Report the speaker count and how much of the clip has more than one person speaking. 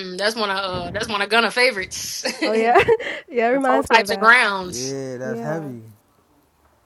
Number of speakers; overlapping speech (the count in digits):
3, about 22%